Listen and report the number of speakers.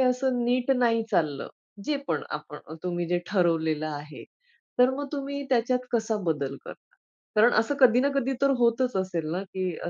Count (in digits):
1